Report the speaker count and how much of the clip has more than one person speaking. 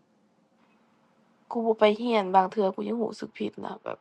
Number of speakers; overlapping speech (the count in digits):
1, no overlap